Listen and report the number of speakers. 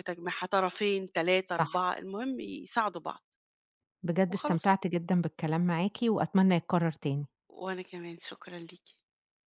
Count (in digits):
2